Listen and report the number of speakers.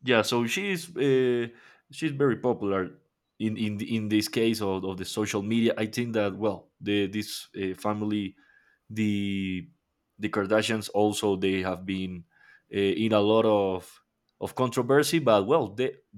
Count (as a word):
one